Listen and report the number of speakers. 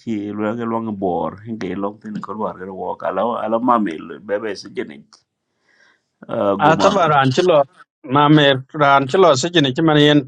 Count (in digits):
2